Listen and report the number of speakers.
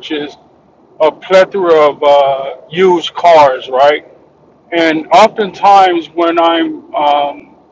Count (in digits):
1